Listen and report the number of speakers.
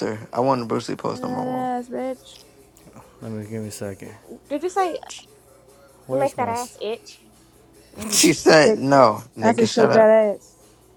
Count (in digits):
4